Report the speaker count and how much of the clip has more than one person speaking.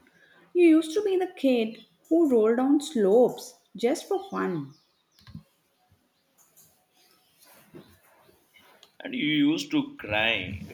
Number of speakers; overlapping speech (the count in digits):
2, no overlap